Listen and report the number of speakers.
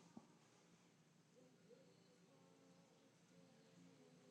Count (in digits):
0